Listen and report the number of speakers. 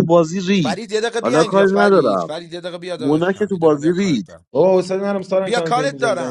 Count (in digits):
3